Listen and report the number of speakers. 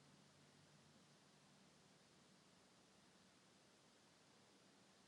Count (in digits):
0